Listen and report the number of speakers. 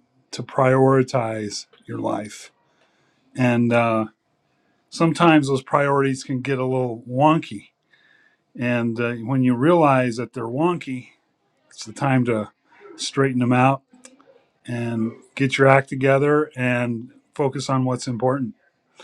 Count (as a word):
one